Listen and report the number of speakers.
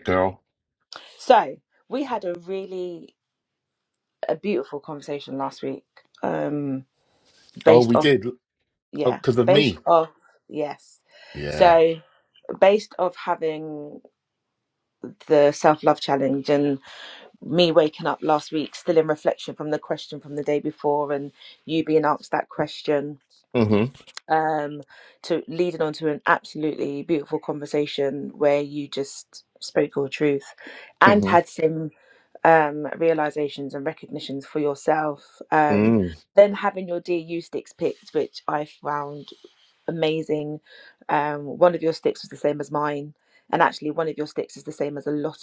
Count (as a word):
two